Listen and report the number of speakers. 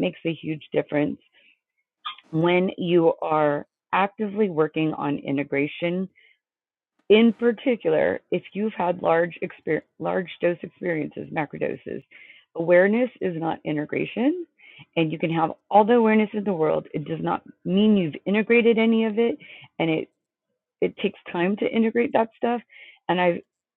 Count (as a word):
one